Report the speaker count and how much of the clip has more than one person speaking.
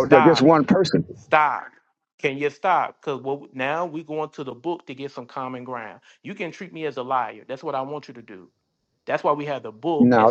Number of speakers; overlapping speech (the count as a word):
two, about 7%